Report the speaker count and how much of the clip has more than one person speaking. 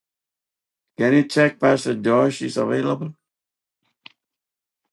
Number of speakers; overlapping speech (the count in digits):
1, no overlap